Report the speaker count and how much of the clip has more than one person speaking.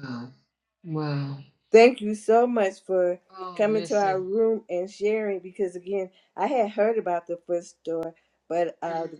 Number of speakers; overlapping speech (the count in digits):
2, about 9%